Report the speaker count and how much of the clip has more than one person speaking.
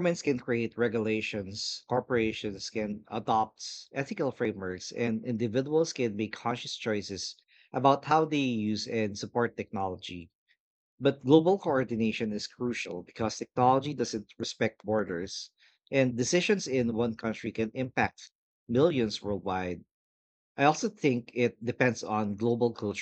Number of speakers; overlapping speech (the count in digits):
1, no overlap